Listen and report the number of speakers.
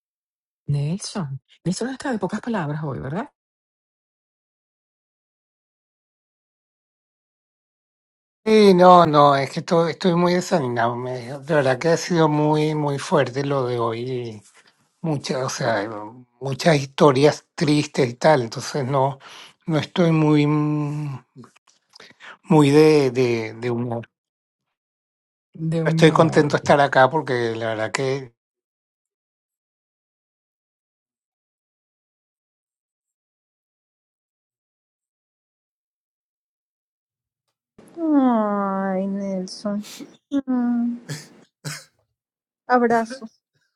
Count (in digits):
3